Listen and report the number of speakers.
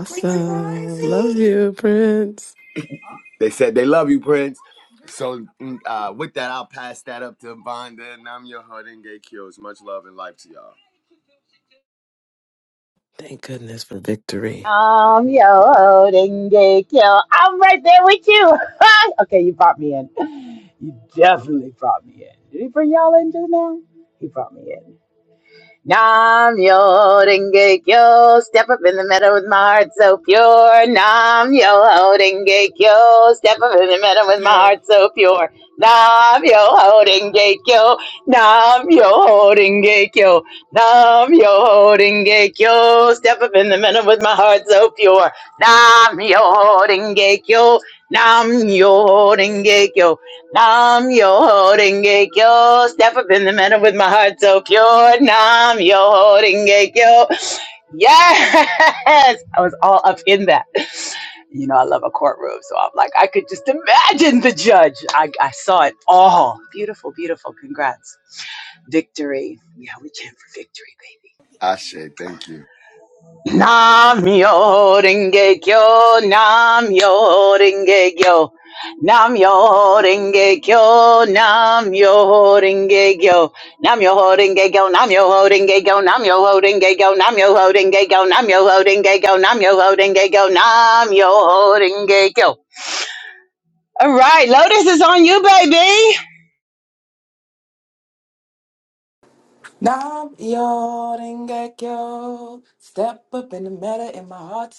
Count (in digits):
4